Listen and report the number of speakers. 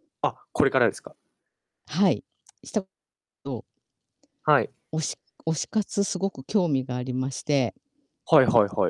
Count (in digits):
2